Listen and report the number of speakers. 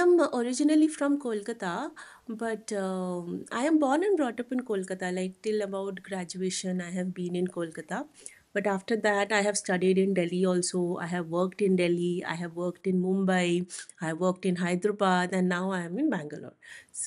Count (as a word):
one